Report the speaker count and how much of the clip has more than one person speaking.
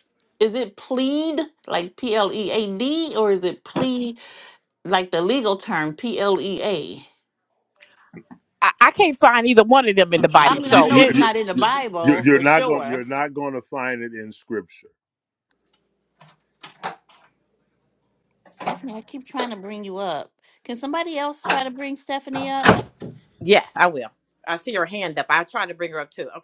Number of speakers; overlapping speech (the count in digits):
3, about 7%